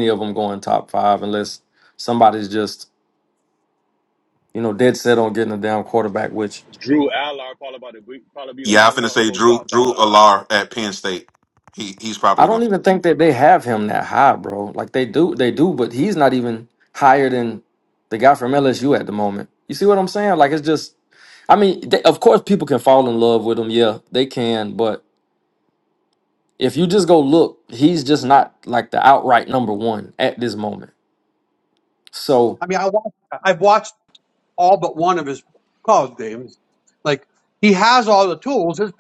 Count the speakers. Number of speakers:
4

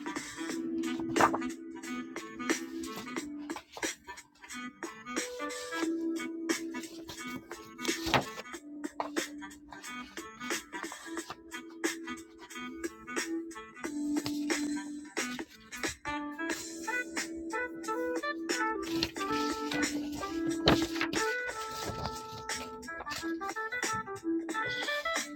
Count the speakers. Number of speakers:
0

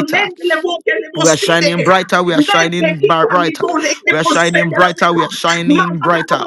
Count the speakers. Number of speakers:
2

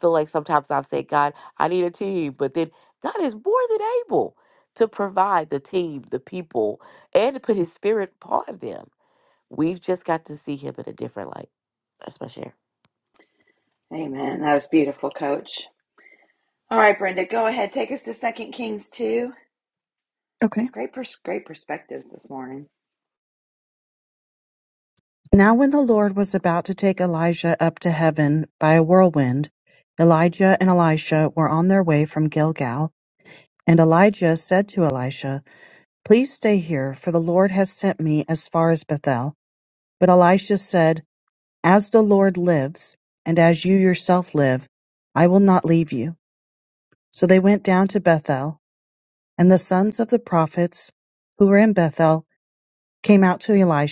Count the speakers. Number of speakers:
3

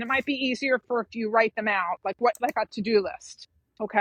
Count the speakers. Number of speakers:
1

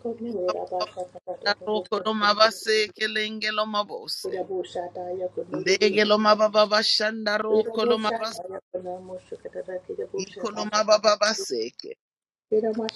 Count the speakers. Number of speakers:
2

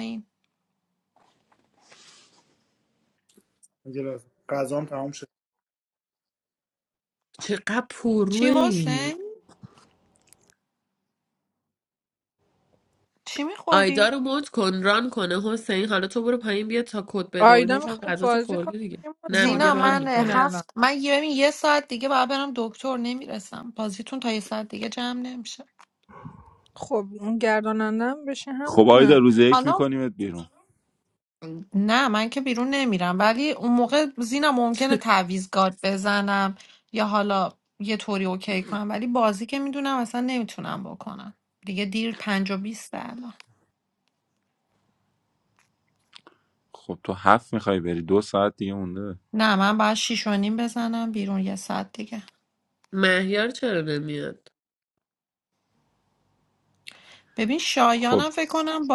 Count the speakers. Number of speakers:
5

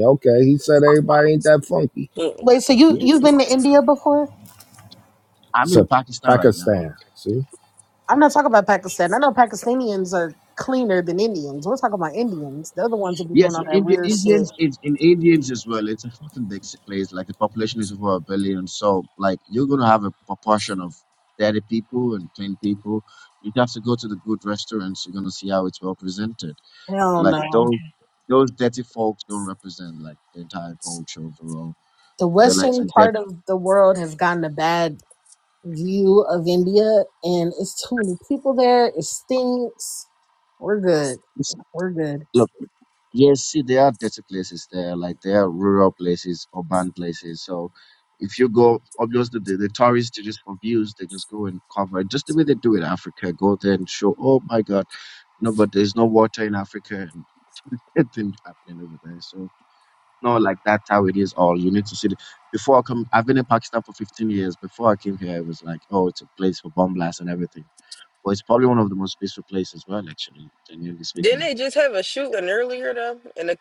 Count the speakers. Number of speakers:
4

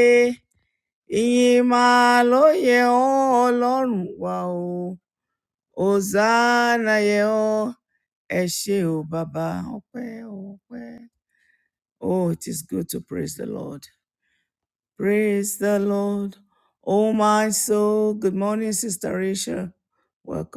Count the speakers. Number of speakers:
1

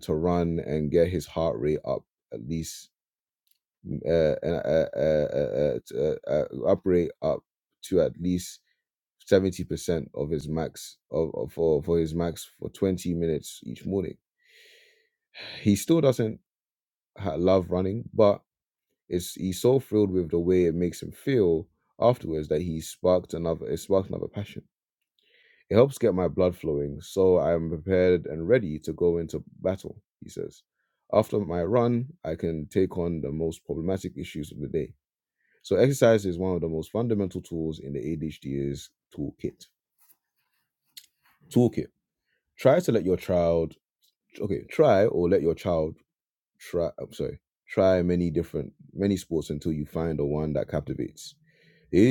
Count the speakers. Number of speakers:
1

